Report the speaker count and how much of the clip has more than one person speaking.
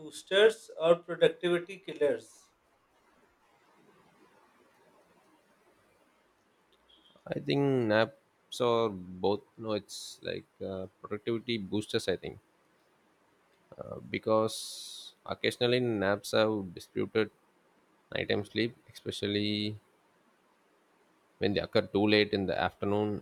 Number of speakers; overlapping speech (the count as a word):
two, no overlap